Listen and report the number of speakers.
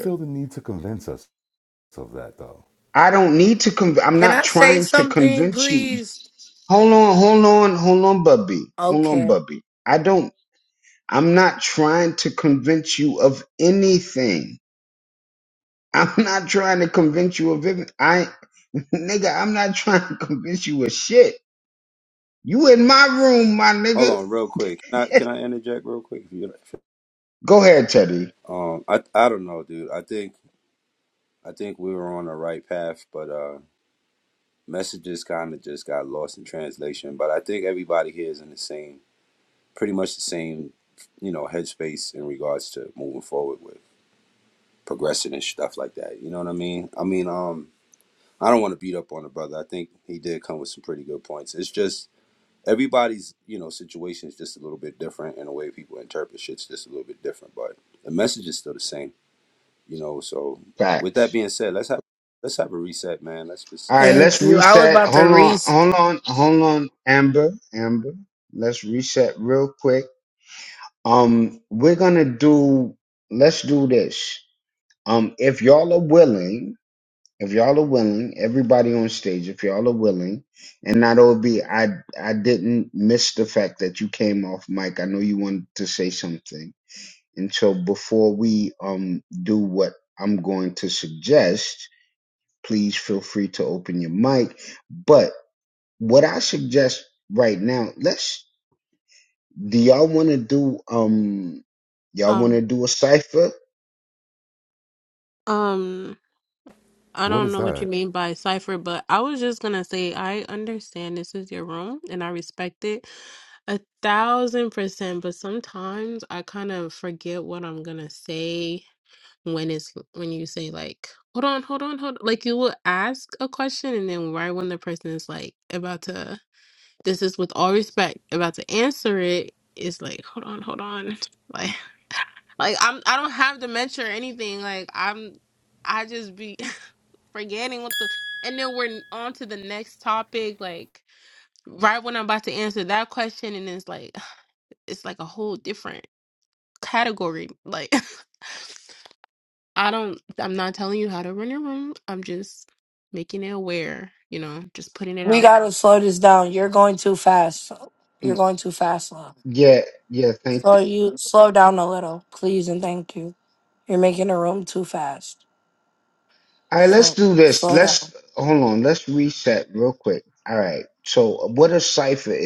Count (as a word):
five